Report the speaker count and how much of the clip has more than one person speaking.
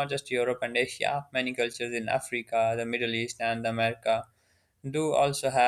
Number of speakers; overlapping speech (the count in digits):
1, no overlap